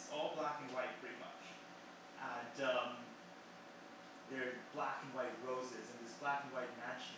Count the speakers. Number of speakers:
one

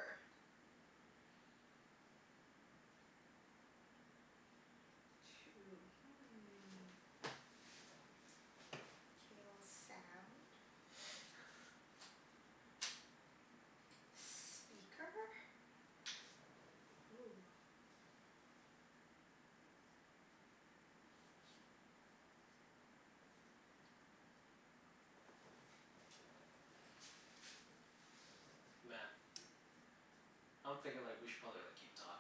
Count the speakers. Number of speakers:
two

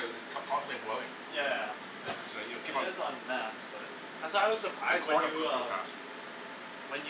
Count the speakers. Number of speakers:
three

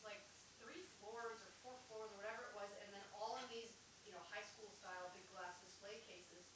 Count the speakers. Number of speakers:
one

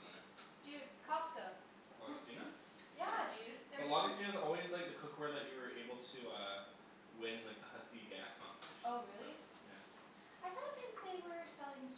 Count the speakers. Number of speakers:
two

